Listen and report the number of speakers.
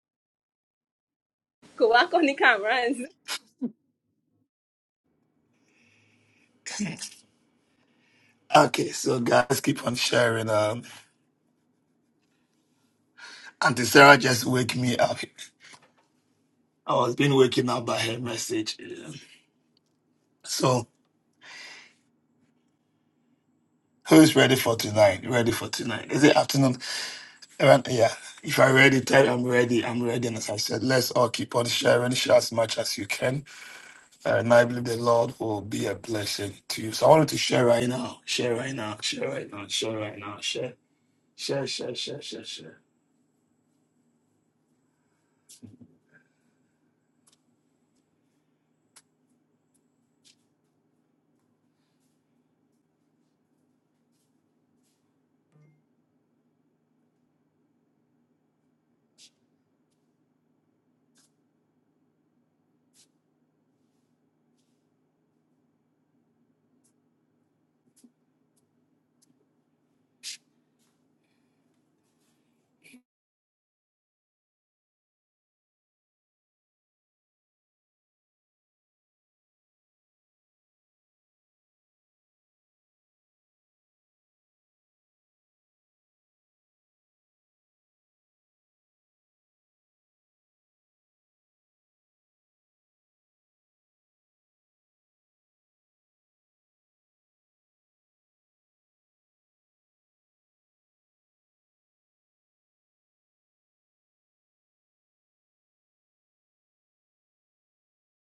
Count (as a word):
two